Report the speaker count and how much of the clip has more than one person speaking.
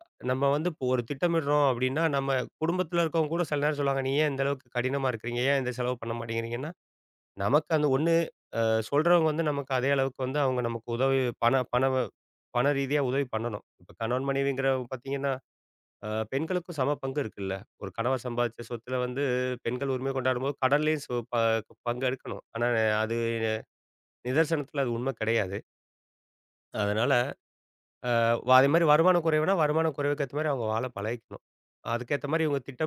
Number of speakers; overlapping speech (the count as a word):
one, no overlap